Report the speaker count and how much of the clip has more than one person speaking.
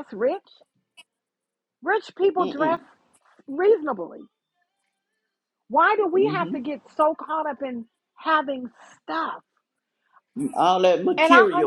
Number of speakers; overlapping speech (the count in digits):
2, about 11%